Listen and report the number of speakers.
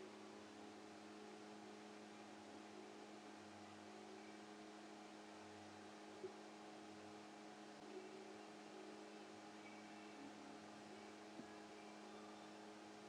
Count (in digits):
0